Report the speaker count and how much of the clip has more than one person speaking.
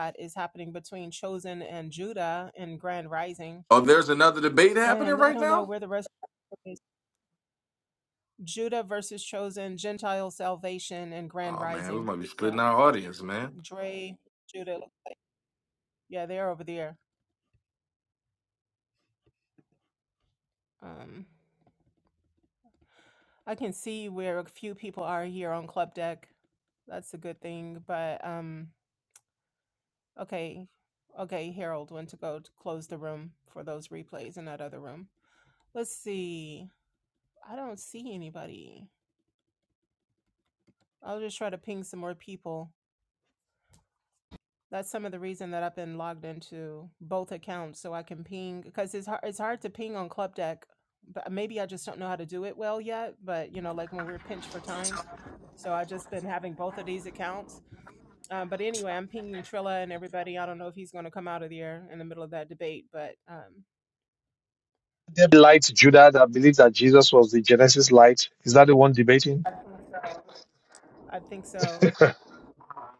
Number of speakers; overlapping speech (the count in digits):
3, about 2%